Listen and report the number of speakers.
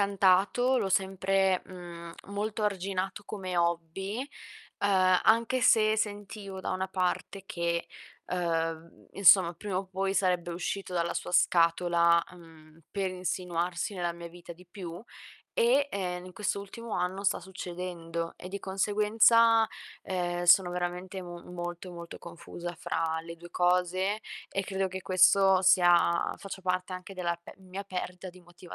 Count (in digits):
1